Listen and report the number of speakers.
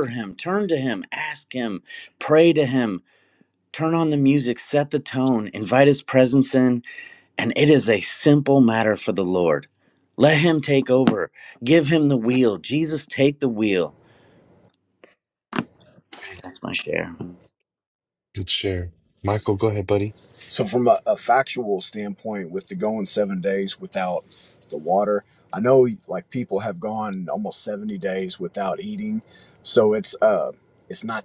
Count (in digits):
3